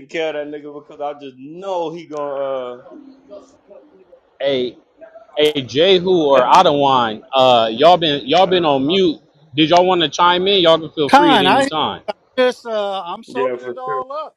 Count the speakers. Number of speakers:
3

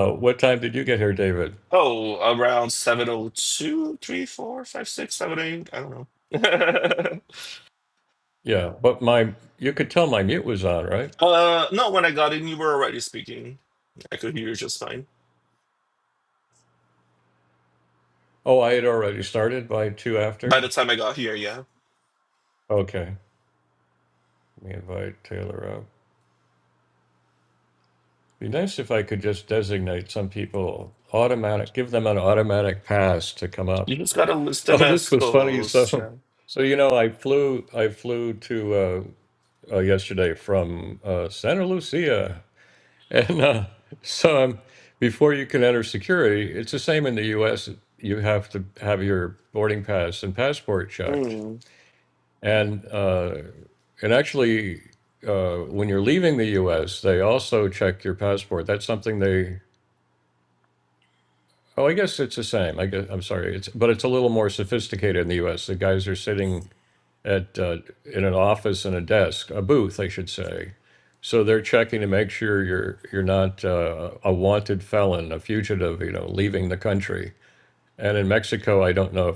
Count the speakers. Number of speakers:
2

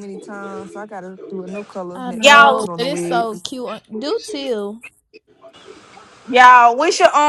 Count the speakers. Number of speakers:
3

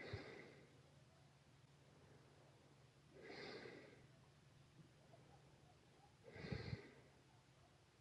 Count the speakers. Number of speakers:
0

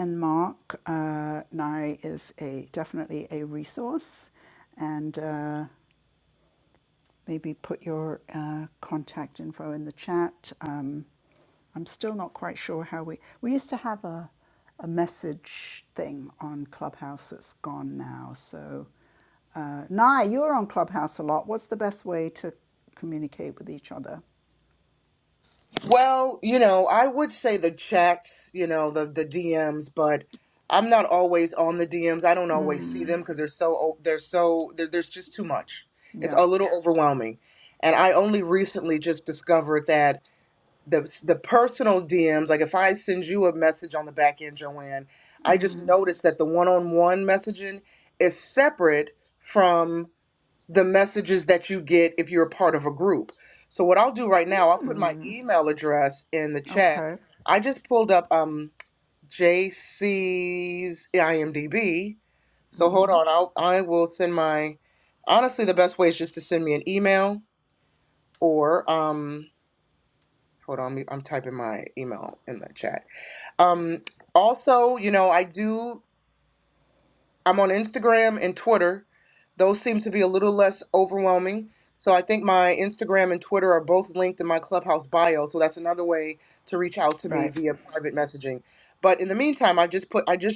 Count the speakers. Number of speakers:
2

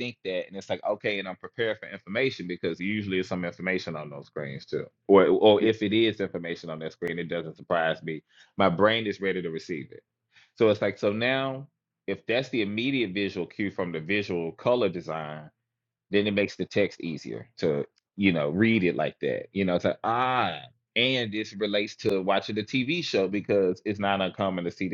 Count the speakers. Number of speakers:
1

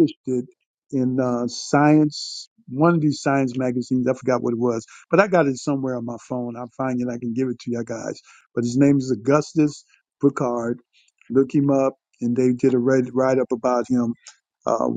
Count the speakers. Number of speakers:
1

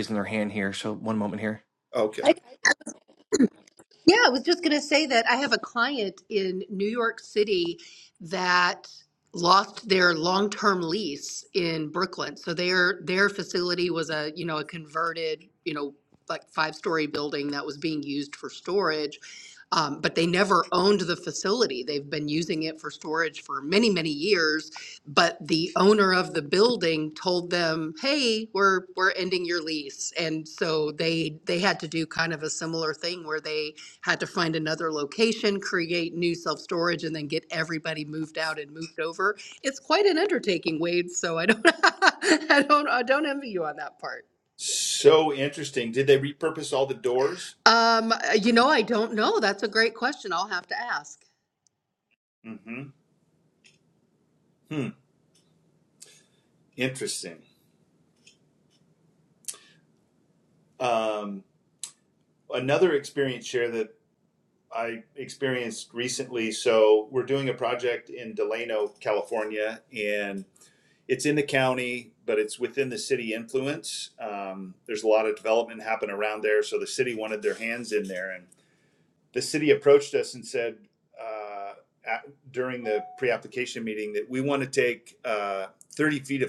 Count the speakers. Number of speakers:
3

